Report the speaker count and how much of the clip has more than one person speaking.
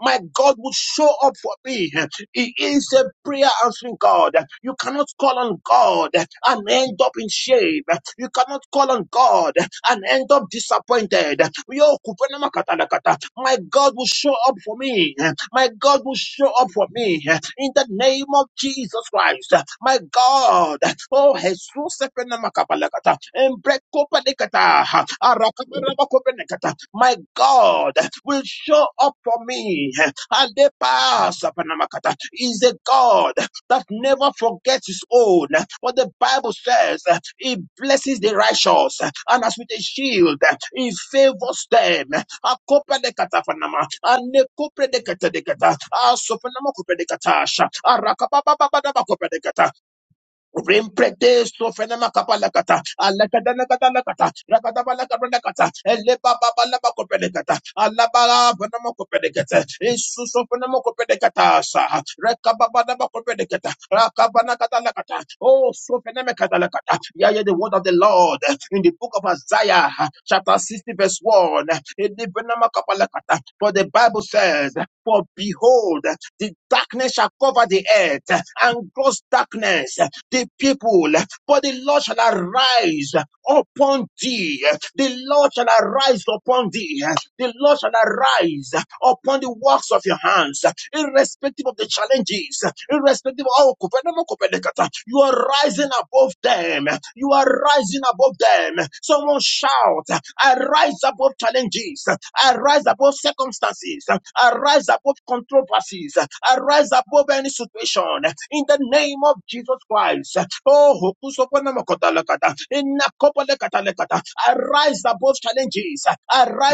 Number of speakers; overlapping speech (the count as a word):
one, no overlap